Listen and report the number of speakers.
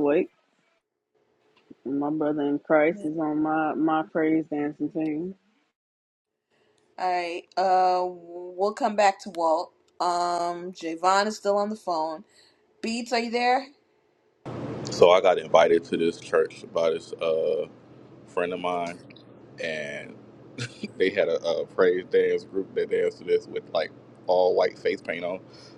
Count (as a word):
three